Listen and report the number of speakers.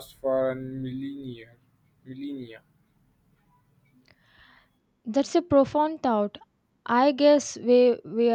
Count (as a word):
two